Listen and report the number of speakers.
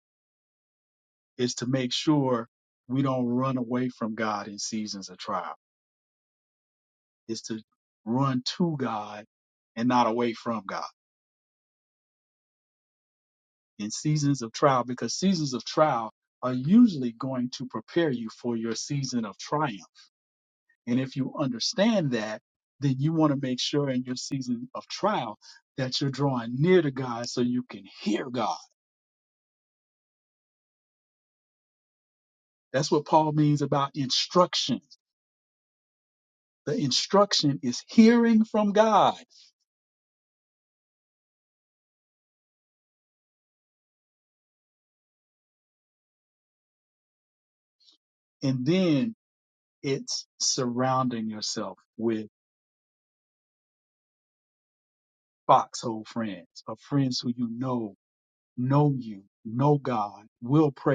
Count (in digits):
1